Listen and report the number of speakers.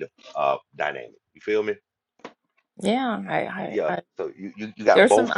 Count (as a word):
two